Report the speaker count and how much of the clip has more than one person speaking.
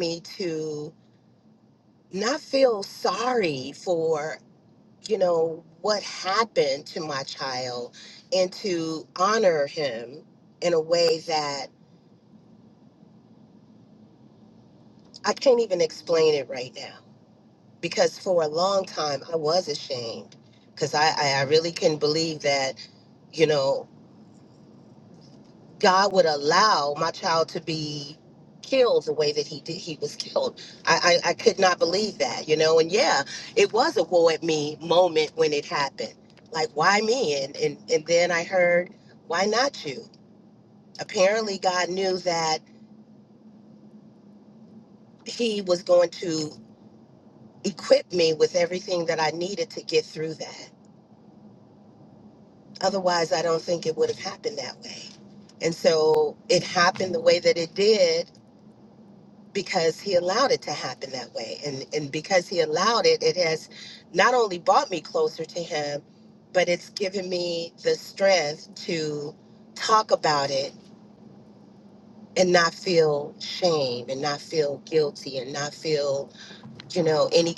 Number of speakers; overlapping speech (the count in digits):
1, no overlap